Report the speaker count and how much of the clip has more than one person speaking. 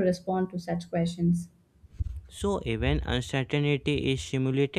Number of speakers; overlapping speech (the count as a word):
two, no overlap